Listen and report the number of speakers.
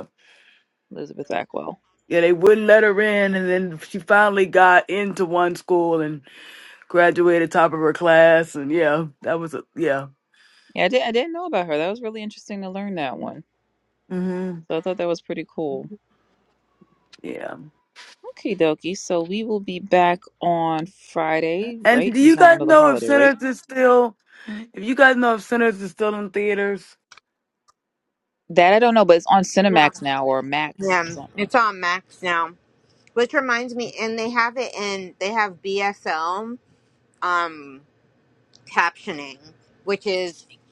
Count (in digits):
3